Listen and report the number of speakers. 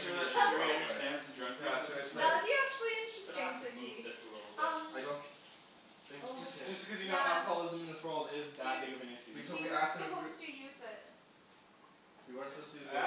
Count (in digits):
4